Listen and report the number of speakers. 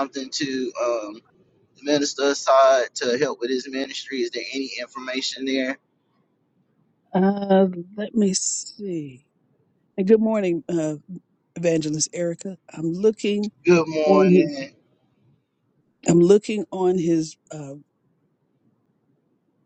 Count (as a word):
two